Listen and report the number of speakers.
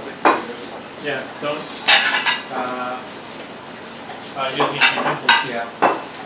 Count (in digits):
2